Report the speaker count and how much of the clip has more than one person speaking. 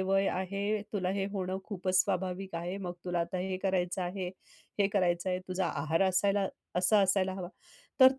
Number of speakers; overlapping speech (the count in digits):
1, no overlap